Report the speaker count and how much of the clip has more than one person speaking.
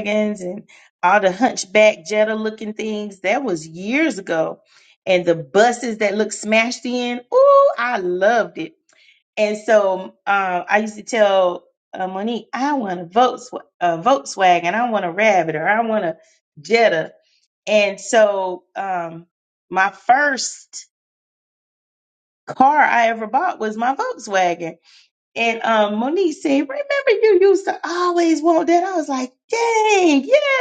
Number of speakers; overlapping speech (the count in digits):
1, no overlap